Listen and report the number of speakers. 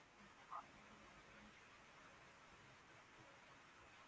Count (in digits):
0